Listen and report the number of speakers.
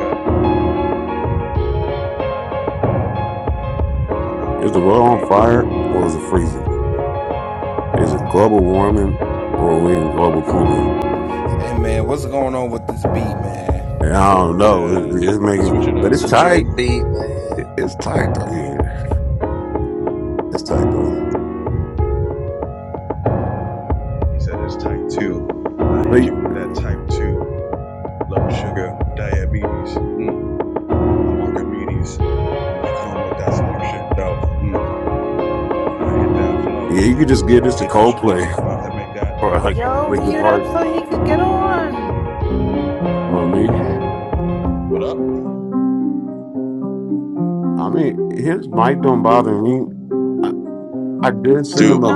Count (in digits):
5